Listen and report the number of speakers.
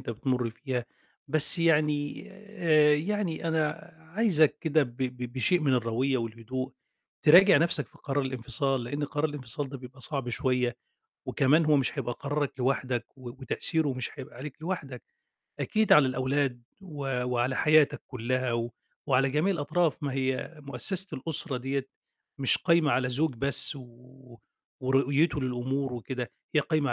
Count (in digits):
1